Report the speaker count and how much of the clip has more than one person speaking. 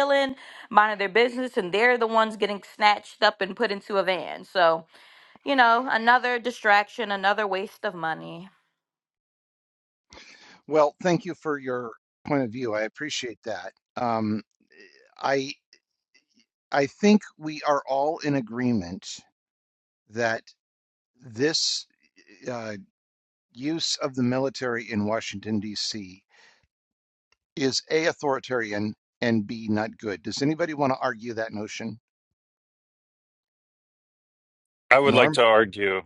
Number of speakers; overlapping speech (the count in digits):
3, about 1%